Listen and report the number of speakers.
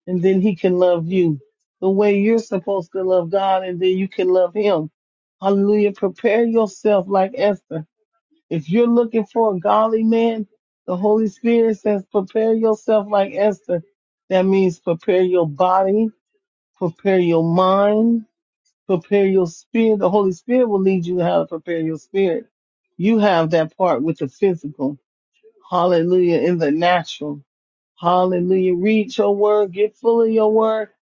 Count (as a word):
one